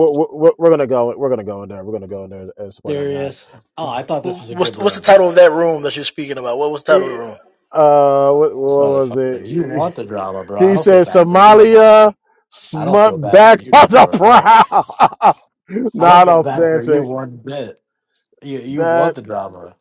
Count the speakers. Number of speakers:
three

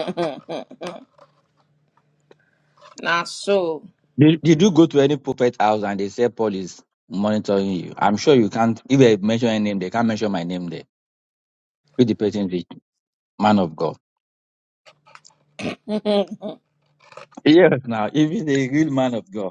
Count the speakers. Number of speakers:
two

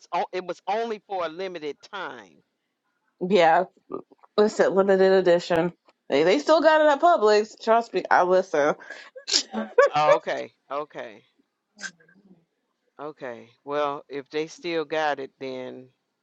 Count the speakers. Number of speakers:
two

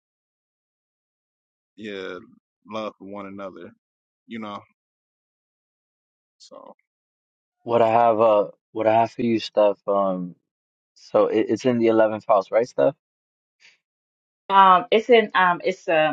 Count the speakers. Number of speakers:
three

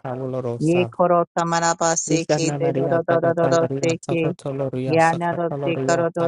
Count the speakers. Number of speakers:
two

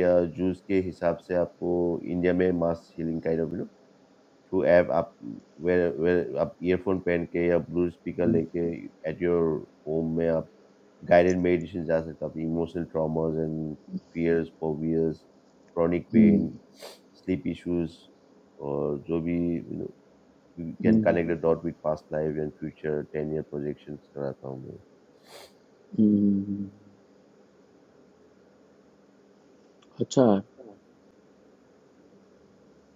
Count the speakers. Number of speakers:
two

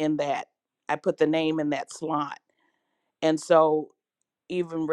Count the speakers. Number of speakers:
one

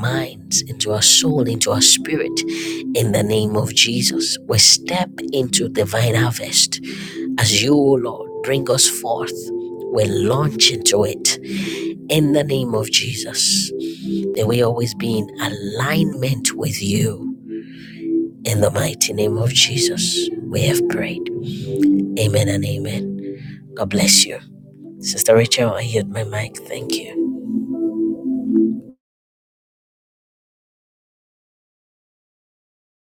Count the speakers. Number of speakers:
one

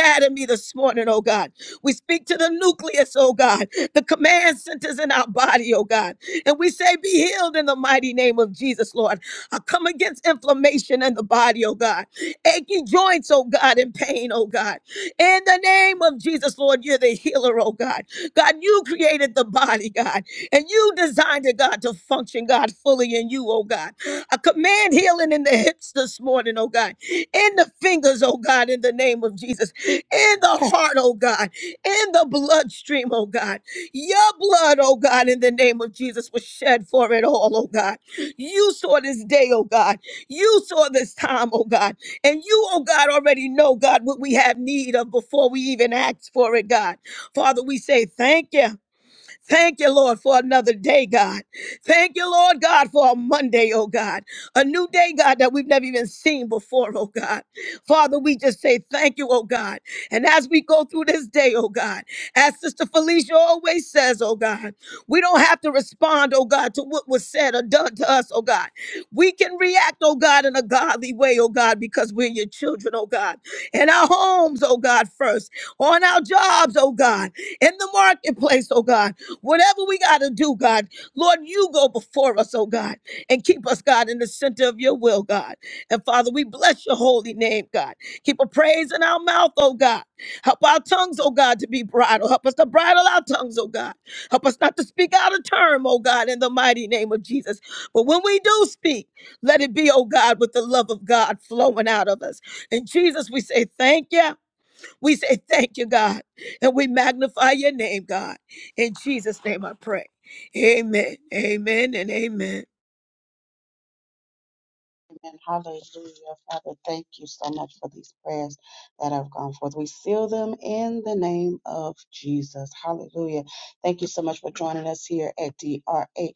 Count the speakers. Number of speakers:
two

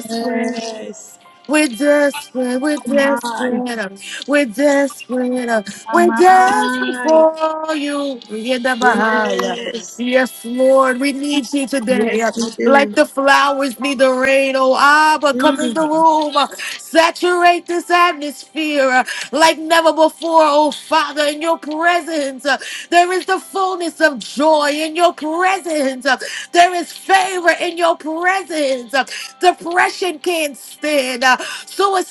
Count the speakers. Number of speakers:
two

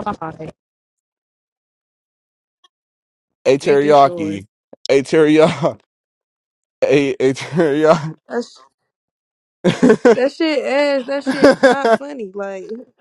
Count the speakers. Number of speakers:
three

